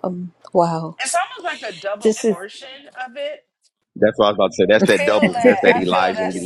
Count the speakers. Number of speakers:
three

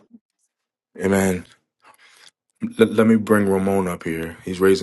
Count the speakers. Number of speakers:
one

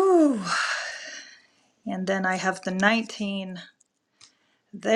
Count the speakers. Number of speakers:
one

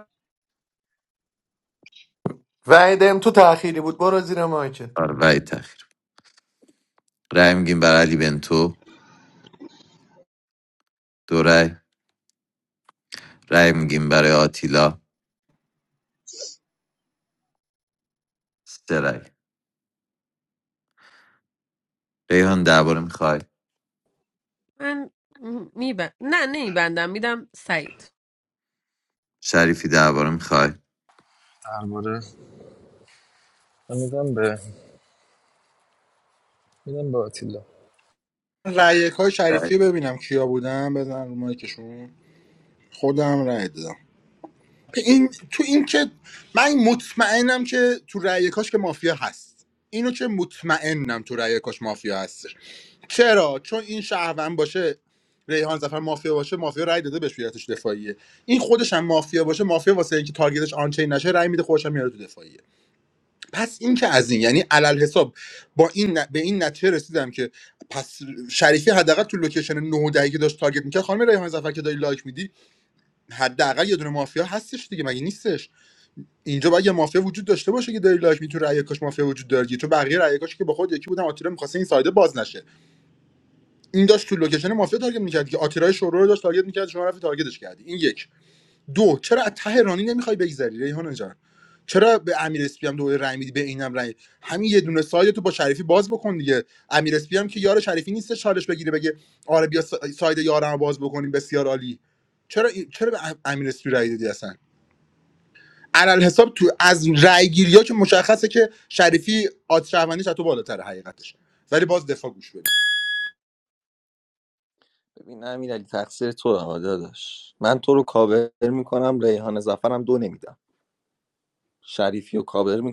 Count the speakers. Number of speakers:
six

